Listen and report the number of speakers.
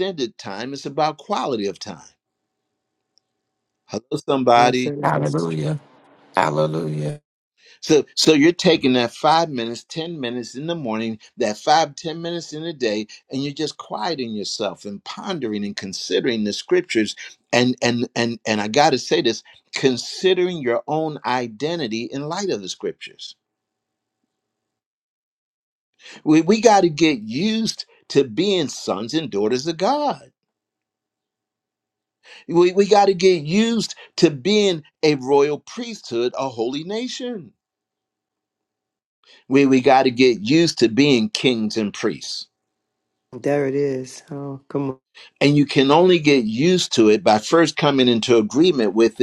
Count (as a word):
three